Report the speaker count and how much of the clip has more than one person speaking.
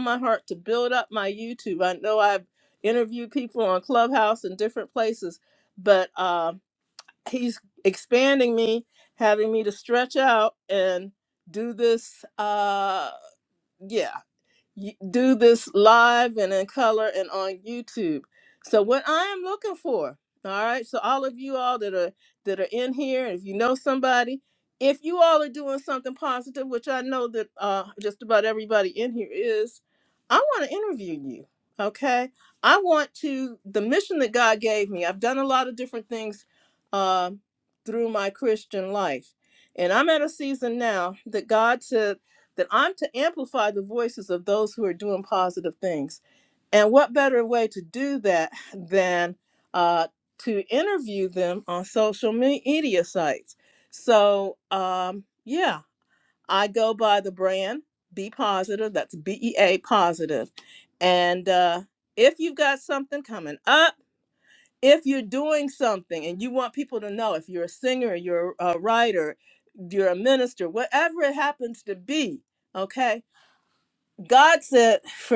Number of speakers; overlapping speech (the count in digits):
1, no overlap